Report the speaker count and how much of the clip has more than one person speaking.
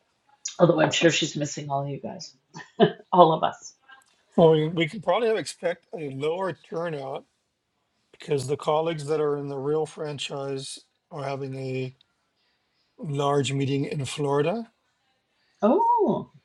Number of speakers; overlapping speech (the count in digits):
2, no overlap